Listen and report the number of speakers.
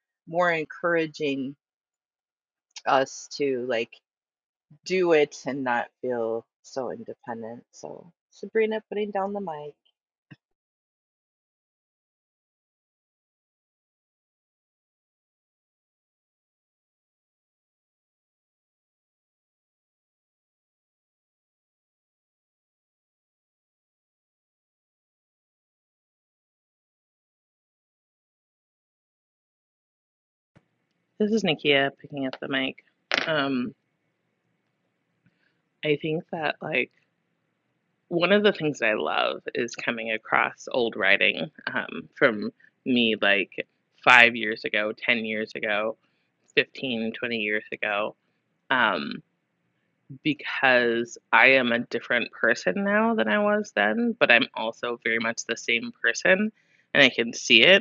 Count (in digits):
2